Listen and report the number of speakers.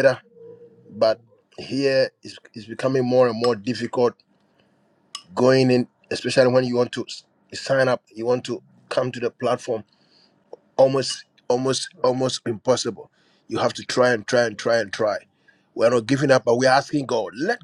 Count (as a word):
one